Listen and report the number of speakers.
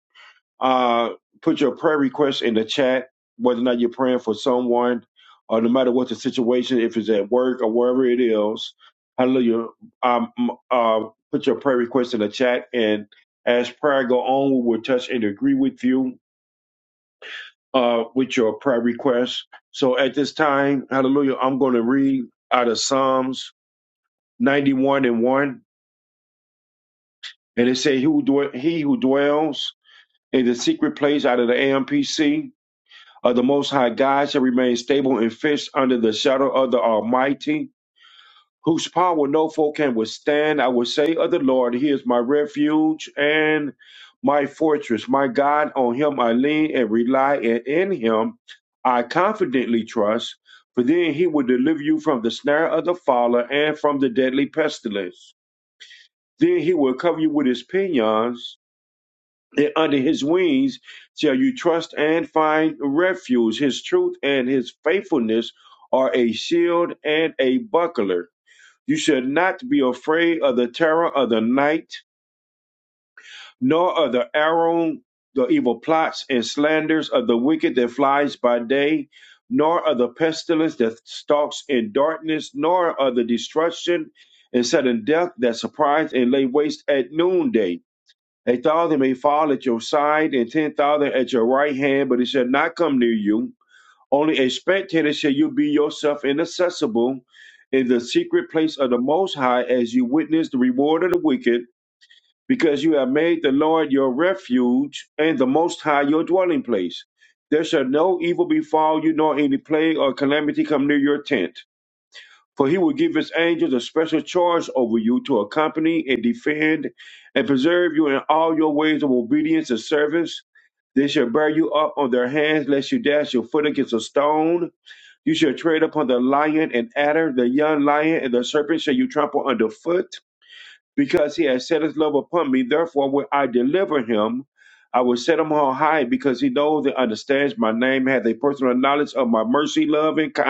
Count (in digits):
1